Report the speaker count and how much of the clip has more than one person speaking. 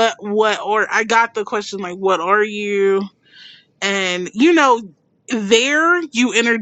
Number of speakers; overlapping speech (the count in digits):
1, no overlap